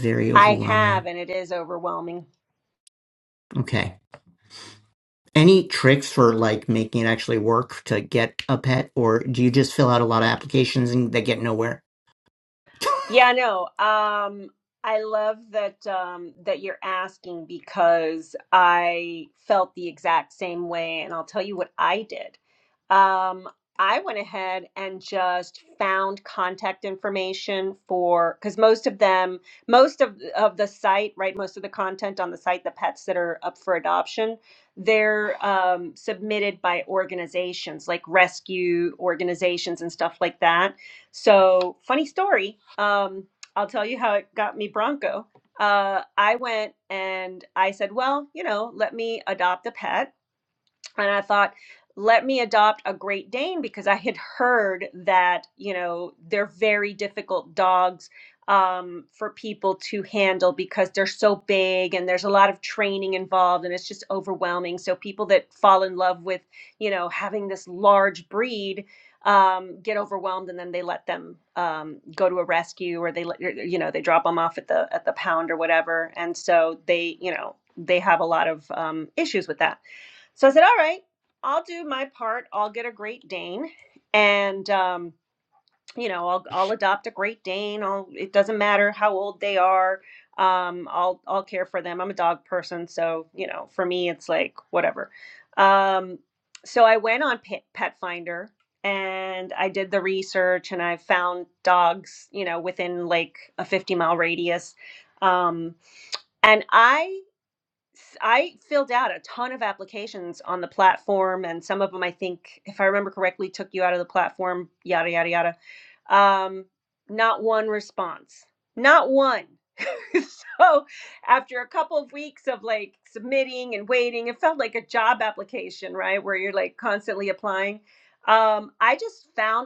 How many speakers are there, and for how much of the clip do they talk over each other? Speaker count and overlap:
two, about 1%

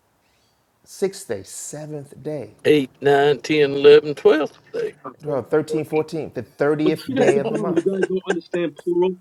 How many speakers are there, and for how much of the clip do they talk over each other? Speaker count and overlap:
three, about 10%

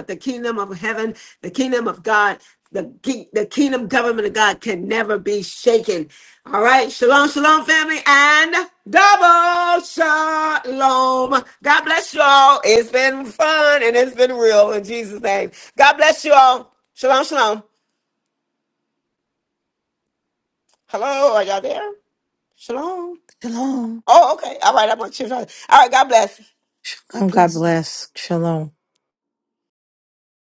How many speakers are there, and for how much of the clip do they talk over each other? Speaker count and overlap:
three, about 1%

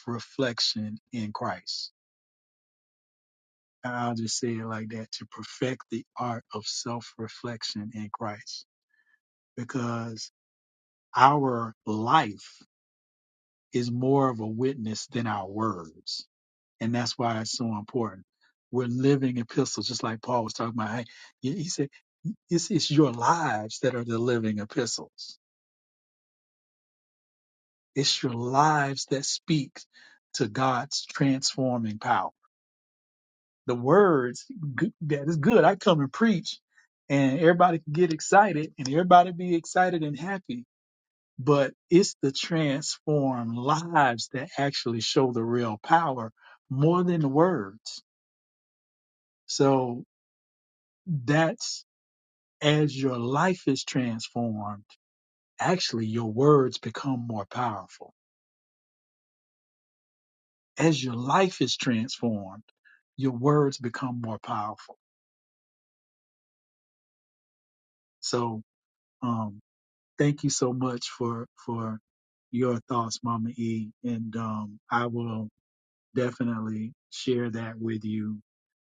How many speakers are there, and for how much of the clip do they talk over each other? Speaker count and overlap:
one, no overlap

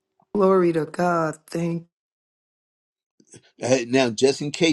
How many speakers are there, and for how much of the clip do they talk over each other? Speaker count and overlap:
two, no overlap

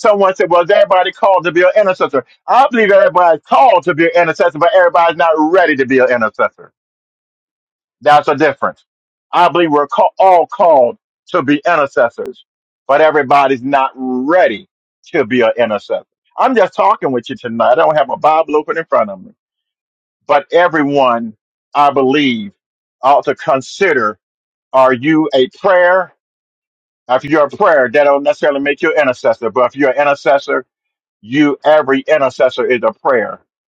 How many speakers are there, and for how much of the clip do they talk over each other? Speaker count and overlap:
one, no overlap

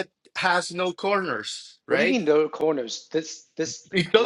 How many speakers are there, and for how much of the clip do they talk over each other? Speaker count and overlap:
two, about 8%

